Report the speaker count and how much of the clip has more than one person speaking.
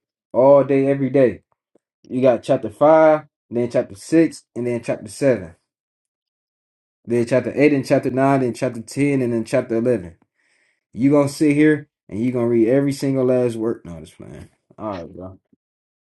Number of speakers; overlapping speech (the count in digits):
1, no overlap